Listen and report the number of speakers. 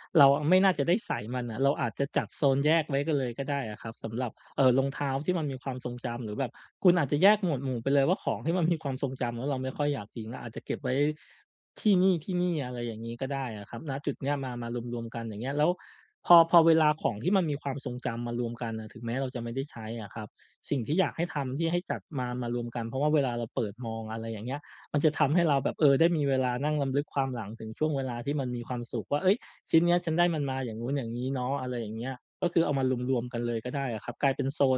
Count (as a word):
one